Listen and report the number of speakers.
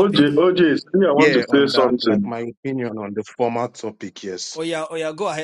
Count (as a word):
three